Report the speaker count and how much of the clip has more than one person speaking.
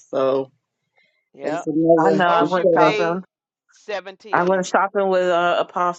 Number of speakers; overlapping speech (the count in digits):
3, about 30%